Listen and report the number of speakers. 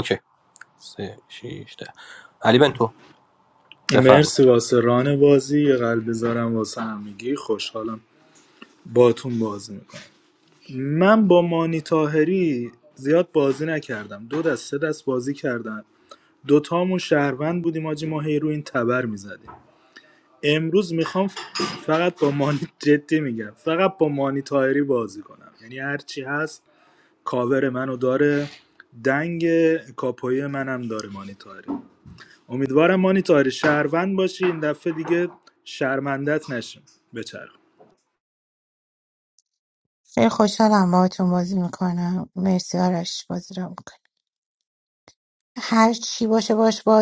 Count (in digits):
3